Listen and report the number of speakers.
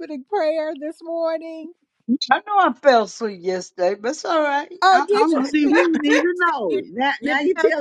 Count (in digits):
3